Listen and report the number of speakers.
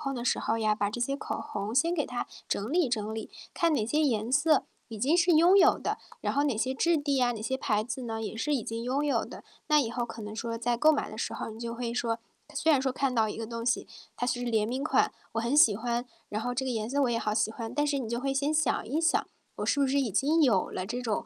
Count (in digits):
1